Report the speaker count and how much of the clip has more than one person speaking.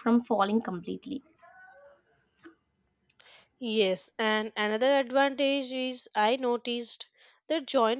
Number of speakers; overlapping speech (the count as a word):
two, no overlap